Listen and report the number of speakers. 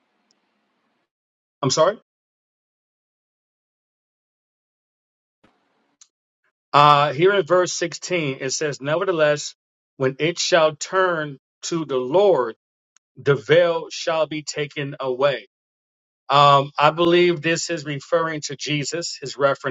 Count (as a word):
one